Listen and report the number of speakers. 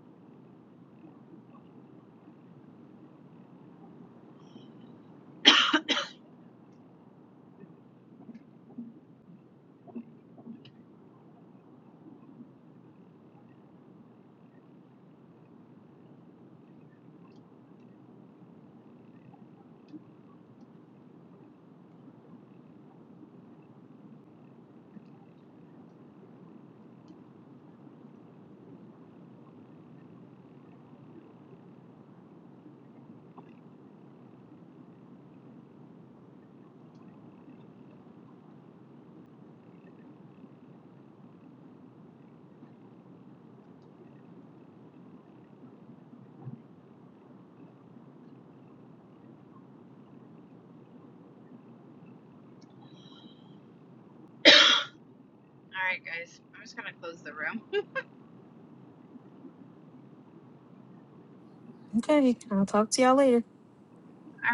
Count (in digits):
2